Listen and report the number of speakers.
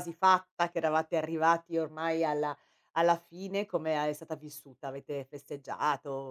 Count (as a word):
one